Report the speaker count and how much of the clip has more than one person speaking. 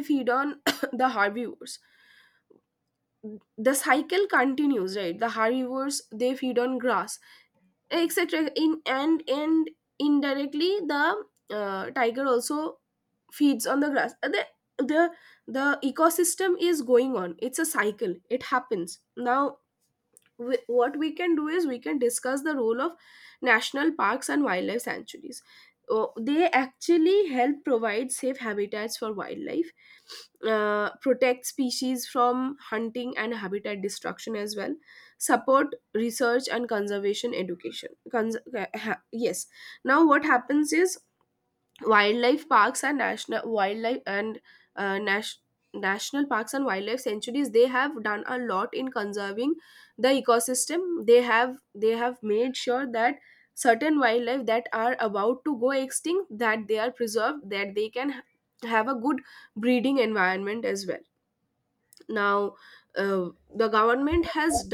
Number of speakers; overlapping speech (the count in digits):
1, no overlap